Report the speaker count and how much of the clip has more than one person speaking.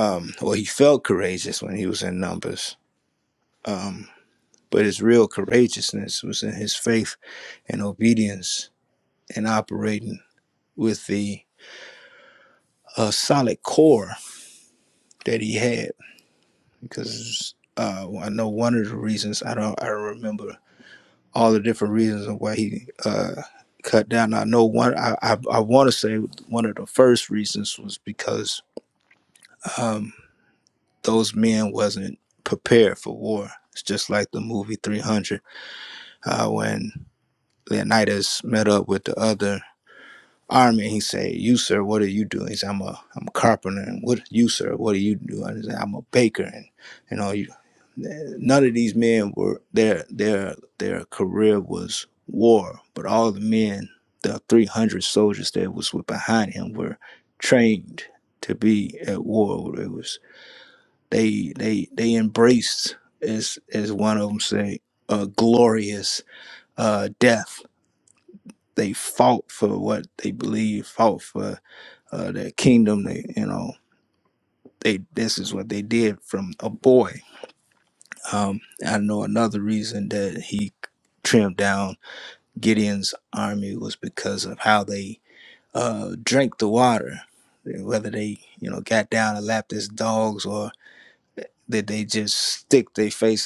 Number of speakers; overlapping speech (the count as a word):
one, no overlap